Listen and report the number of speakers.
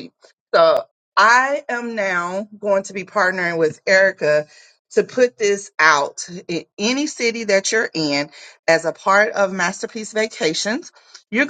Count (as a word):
one